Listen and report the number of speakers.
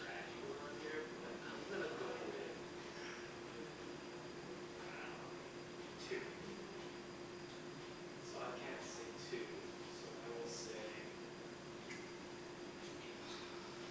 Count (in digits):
2